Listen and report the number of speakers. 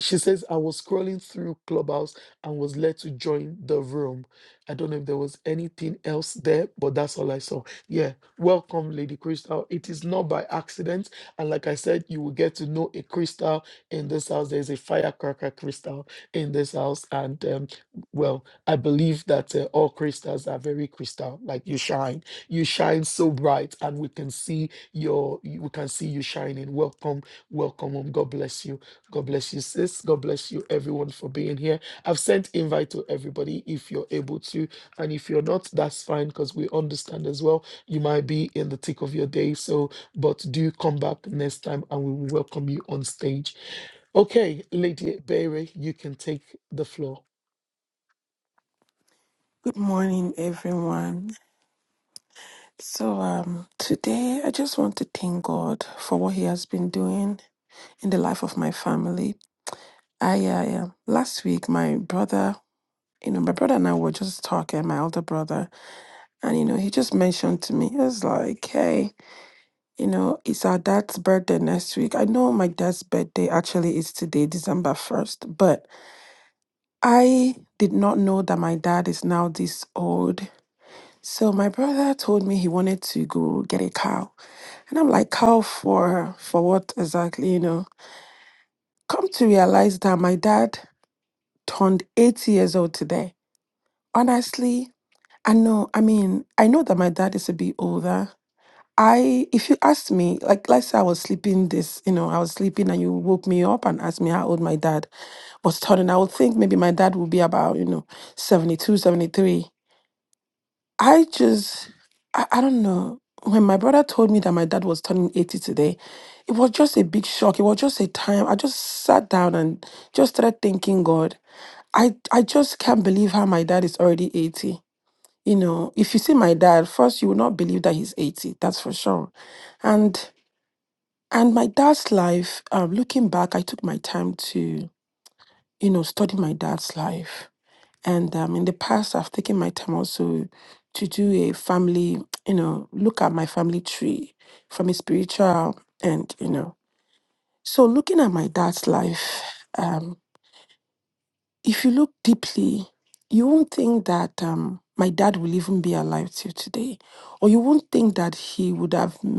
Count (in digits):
2